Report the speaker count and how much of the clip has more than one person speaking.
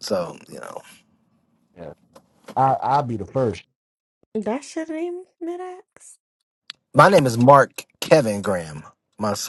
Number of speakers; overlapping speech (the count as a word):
three, no overlap